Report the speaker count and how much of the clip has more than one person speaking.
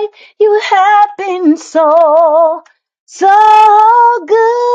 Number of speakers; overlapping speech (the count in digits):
1, no overlap